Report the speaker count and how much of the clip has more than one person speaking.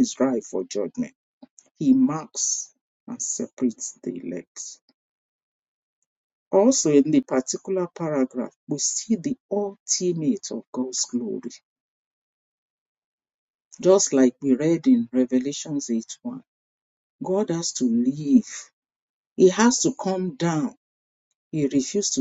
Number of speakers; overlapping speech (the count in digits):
1, no overlap